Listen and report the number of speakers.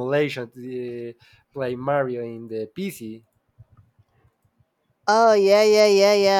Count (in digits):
2